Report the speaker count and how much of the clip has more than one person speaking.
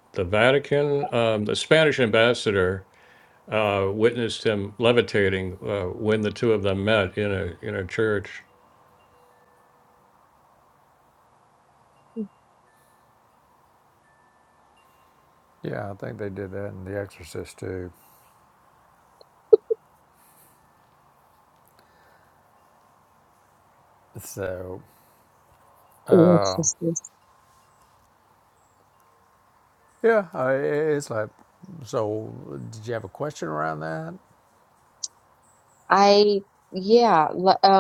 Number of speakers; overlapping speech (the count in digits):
3, no overlap